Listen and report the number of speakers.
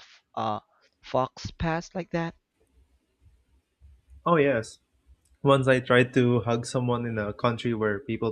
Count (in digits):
2